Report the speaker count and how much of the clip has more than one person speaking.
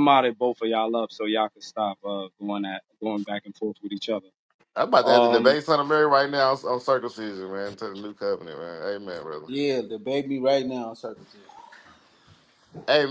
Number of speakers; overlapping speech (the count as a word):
three, about 4%